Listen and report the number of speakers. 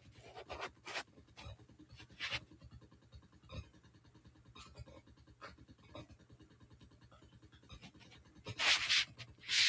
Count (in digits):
0